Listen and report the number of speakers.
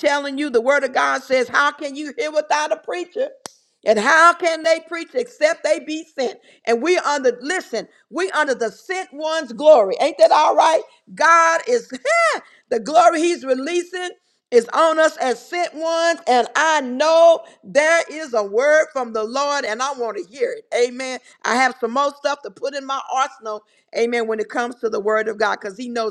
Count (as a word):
one